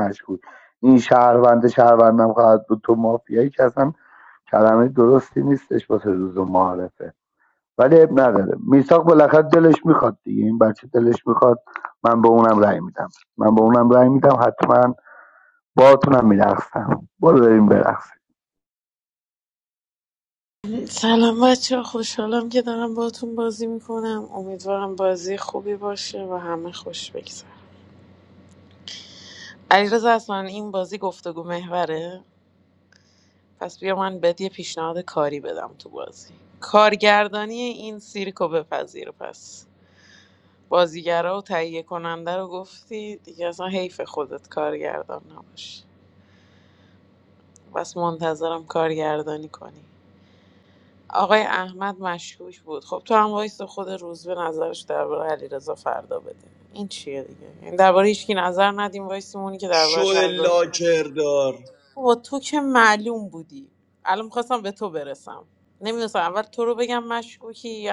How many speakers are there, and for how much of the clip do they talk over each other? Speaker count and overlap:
3, about 1%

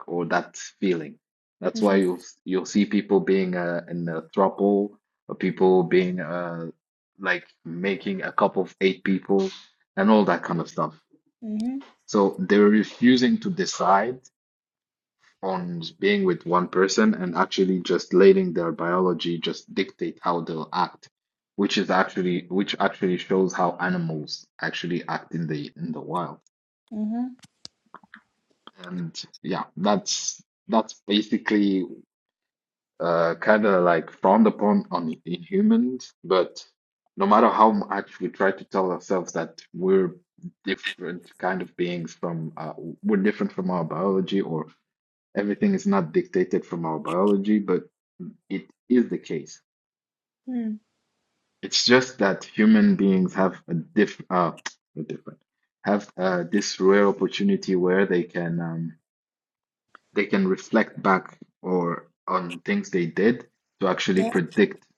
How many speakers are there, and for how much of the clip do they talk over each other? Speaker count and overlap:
2, under 1%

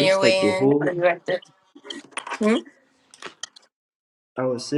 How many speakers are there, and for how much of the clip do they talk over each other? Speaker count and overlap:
2, about 20%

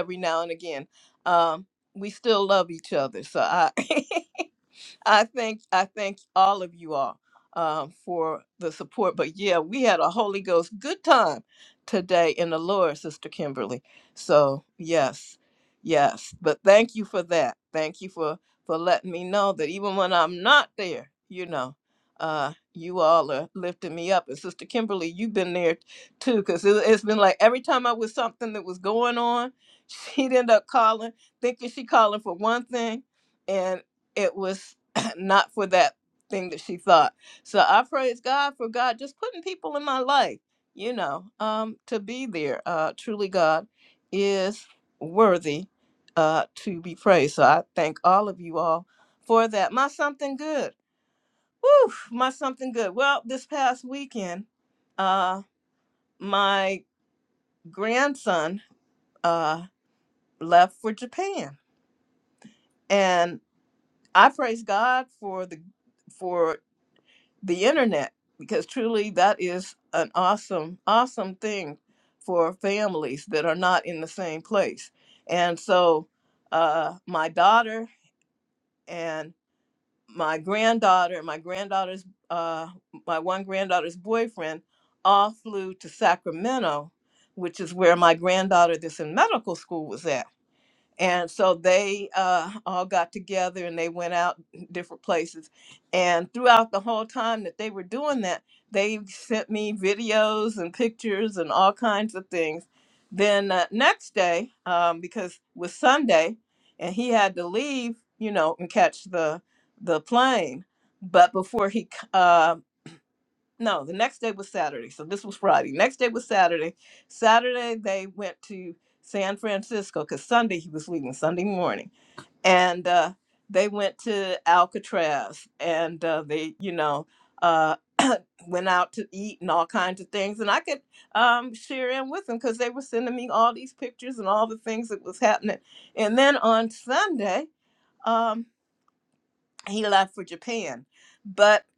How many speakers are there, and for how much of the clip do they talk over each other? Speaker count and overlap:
1, no overlap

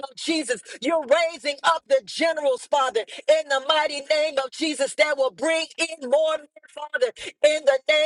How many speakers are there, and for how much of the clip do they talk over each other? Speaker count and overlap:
1, no overlap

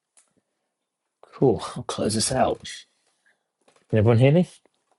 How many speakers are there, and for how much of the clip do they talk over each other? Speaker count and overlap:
1, no overlap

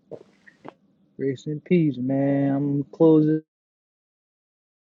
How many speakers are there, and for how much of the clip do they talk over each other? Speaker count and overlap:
1, no overlap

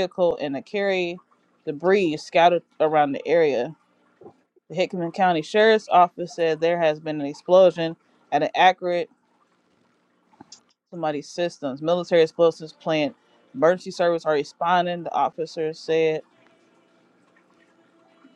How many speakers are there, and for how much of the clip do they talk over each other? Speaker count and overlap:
1, no overlap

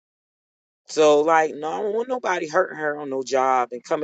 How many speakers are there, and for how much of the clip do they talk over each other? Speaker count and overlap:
1, no overlap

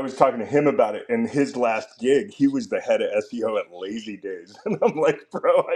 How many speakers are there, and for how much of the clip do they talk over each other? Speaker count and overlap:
1, no overlap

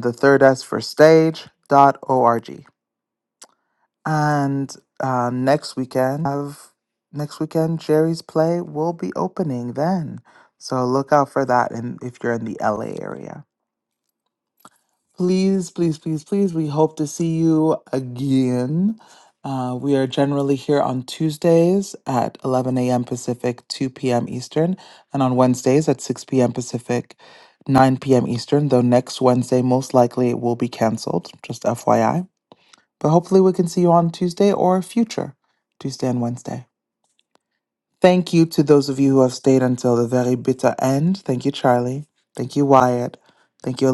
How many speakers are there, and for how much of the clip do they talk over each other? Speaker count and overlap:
1, no overlap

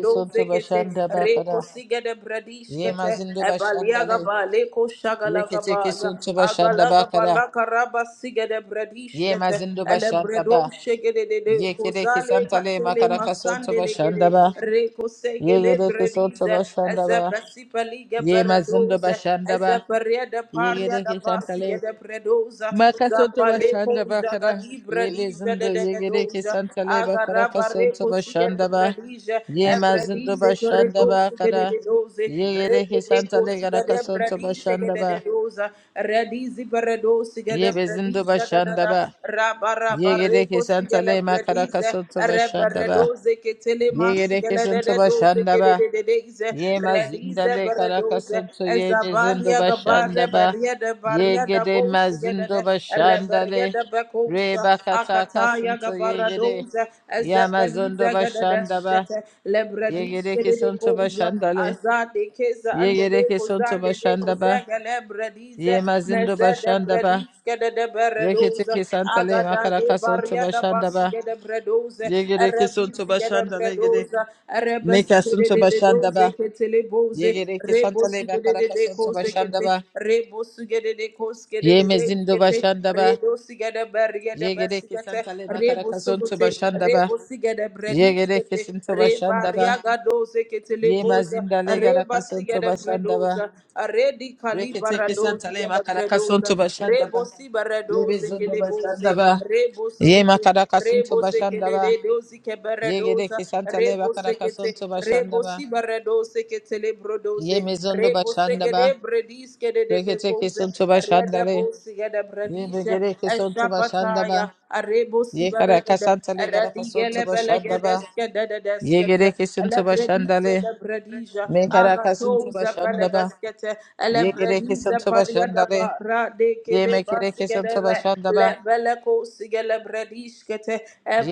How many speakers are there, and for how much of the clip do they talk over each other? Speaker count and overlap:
2, about 64%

